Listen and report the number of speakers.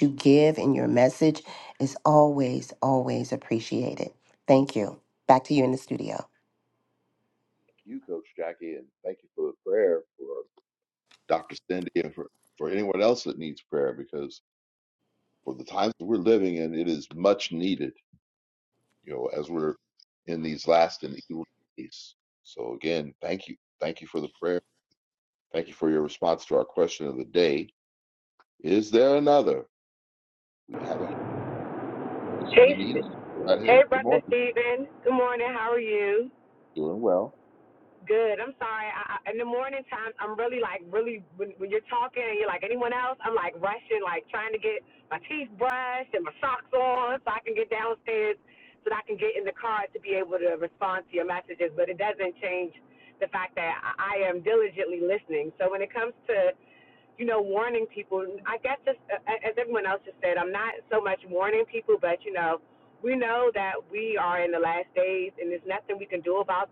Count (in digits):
3